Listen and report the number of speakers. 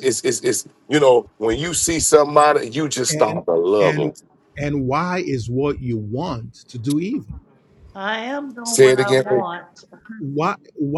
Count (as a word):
three